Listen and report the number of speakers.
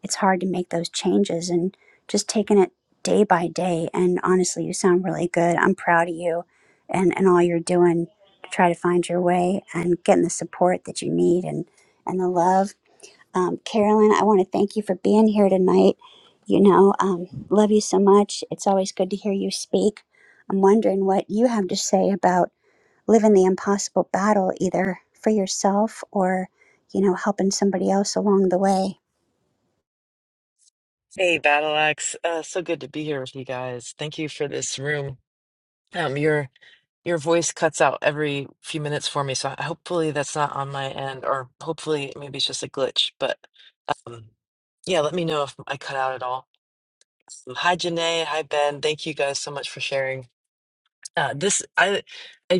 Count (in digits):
2